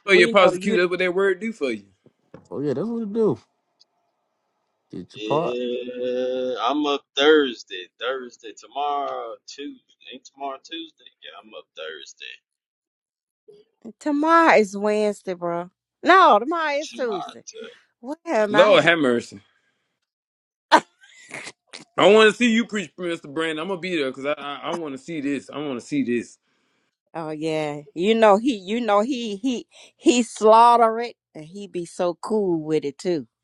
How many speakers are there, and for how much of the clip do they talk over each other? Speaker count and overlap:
4, about 6%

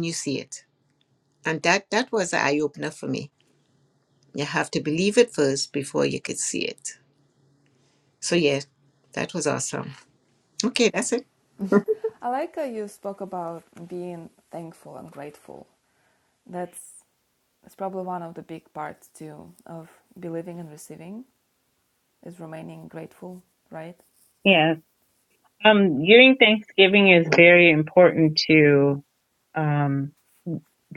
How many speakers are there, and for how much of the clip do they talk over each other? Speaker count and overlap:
3, no overlap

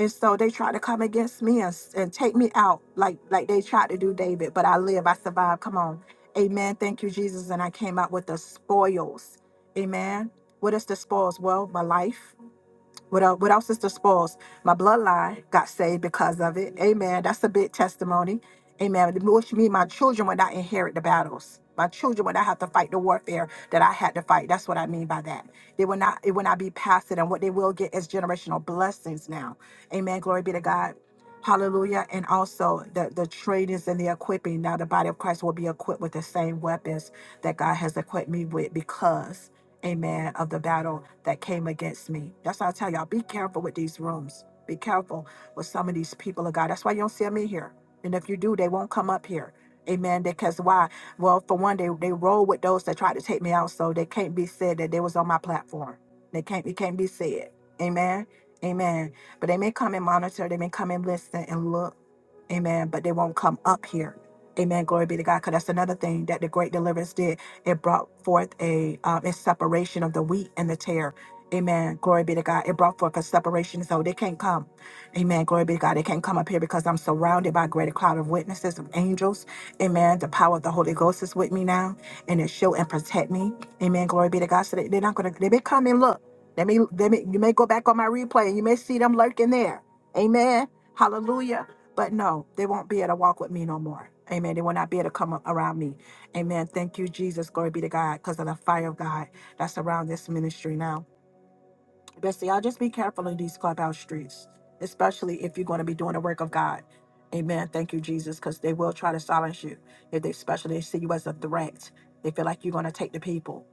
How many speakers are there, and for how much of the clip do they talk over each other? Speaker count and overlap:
1, no overlap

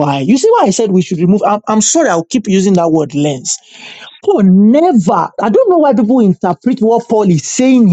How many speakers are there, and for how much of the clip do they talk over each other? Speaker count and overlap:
1, no overlap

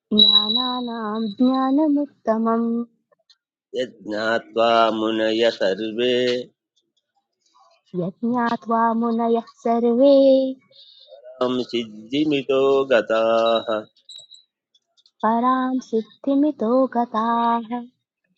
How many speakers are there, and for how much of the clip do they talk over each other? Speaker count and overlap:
2, no overlap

